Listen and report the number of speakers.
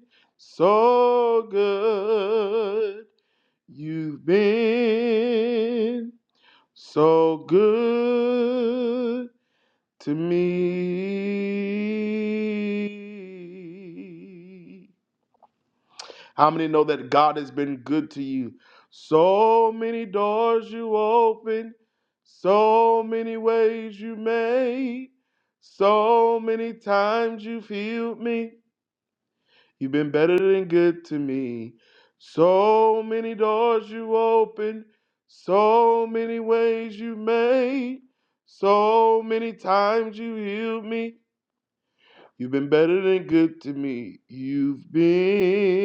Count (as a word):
one